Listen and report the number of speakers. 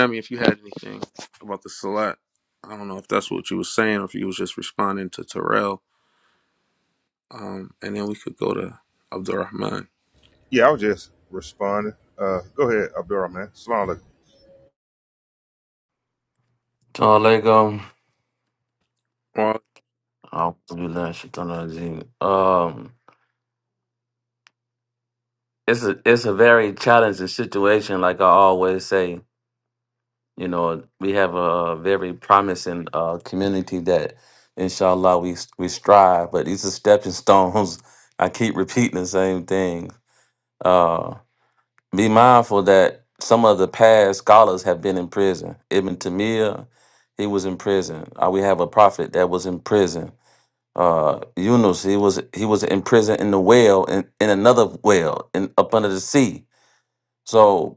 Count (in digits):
3